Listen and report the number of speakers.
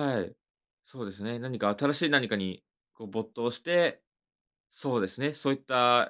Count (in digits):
1